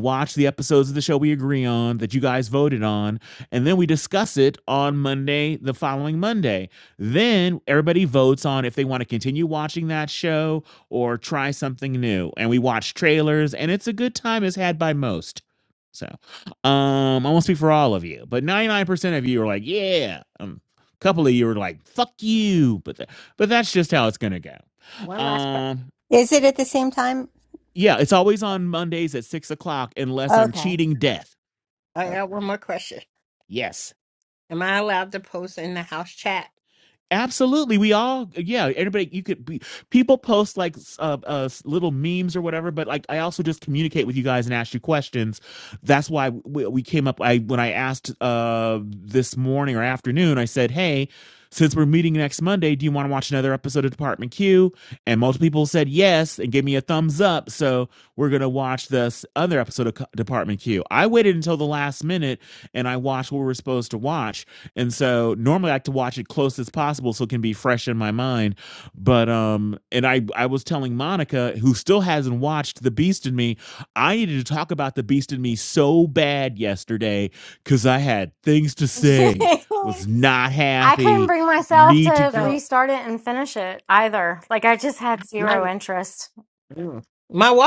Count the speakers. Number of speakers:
4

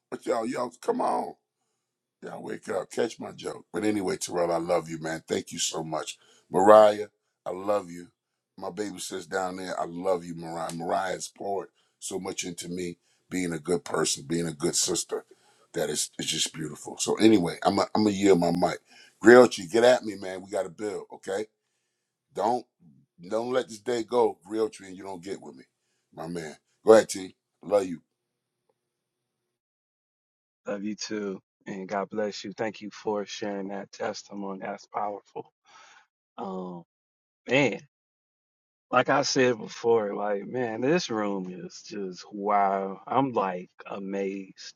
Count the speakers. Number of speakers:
2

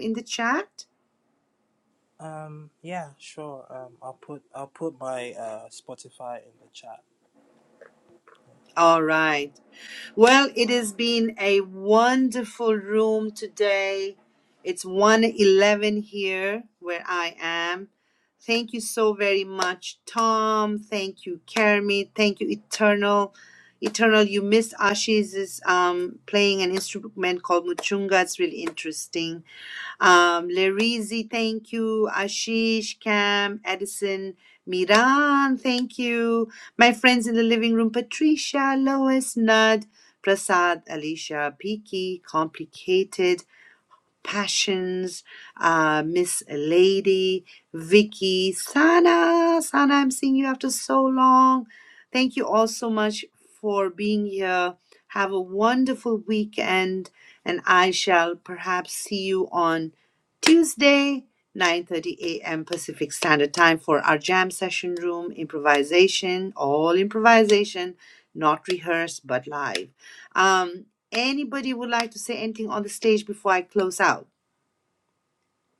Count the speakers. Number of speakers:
2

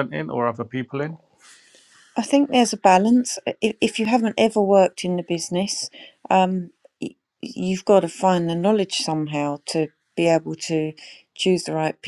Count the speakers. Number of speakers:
2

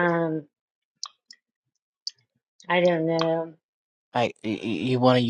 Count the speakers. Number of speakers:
2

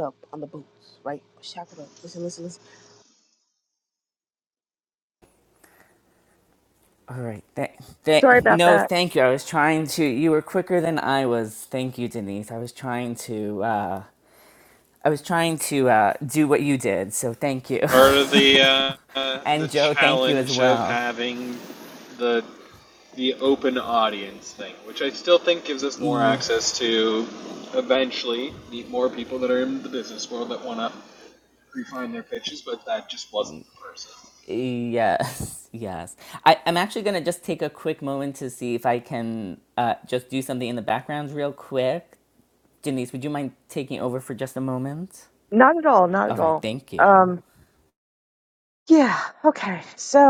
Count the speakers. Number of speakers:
4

